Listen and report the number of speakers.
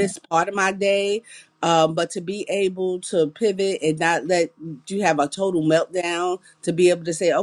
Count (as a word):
one